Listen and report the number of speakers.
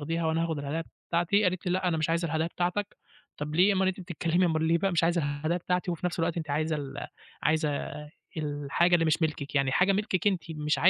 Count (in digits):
1